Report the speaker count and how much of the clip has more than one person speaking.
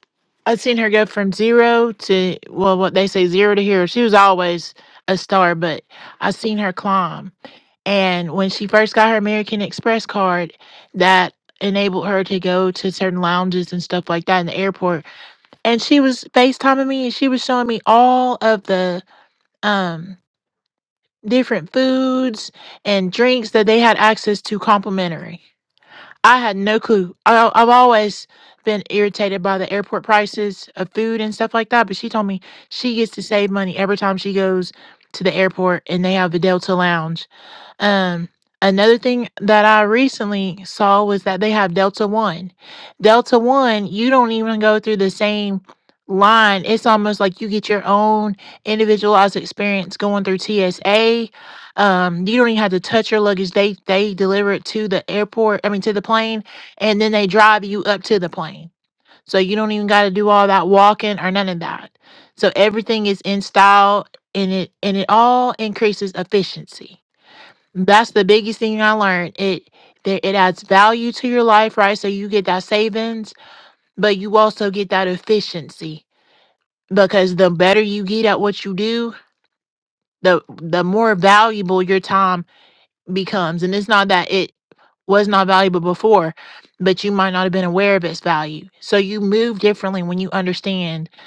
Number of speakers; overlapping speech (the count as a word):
one, no overlap